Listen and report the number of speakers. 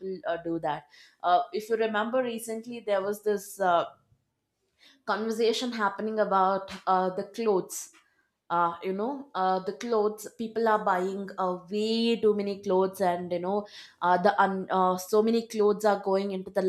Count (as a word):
one